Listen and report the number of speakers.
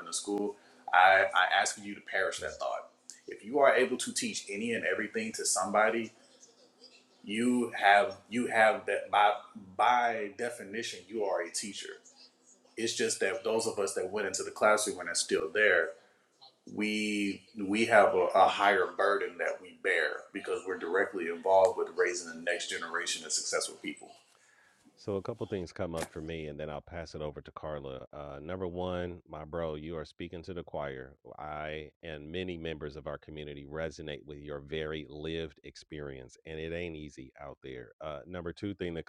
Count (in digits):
2